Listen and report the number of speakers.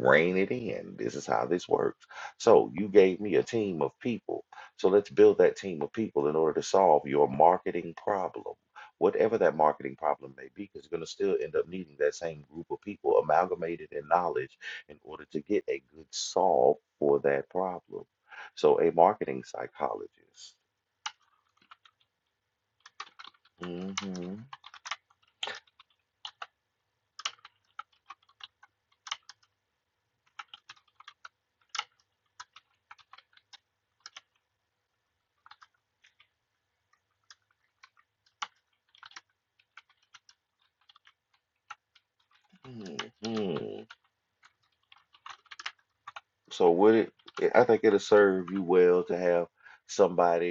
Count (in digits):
1